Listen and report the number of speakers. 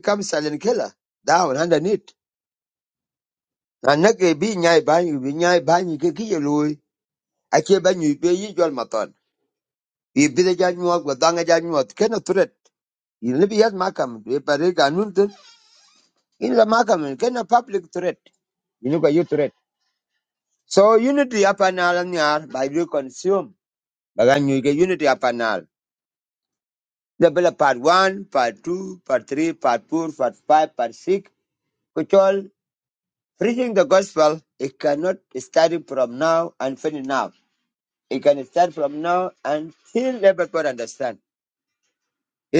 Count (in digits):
1